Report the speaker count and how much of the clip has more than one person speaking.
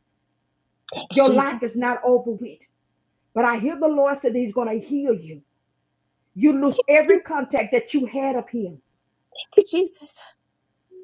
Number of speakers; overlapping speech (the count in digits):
2, about 5%